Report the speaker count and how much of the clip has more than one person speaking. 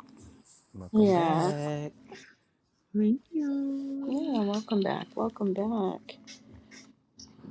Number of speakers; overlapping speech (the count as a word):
three, about 12%